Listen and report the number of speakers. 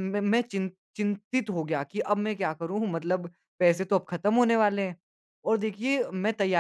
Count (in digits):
1